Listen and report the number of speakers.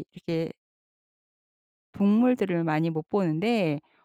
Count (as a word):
one